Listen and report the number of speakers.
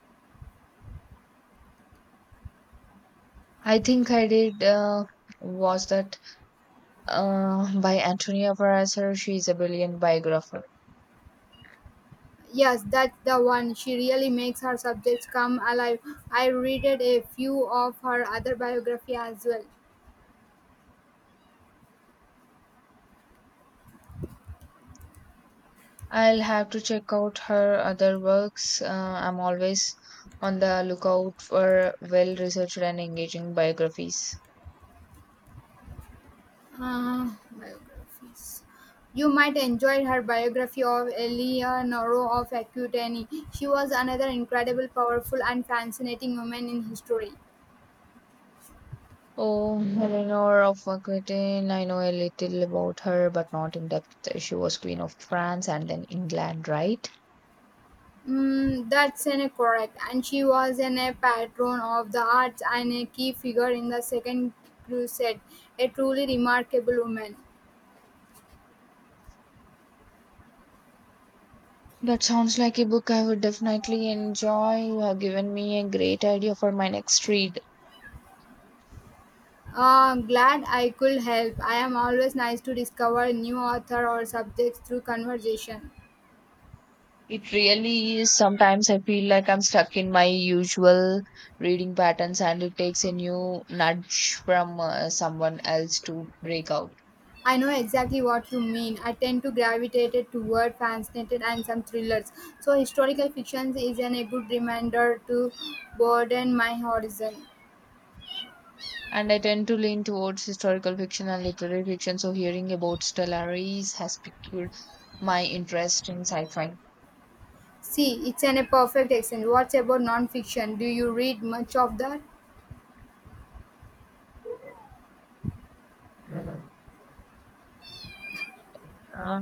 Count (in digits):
2